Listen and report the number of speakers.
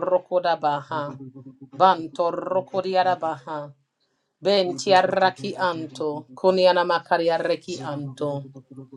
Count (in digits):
2